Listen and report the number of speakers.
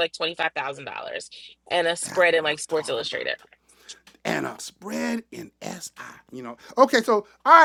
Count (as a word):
two